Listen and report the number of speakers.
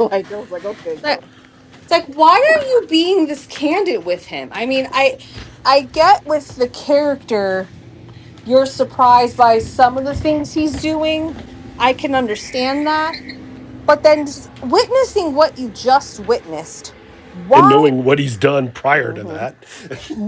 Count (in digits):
3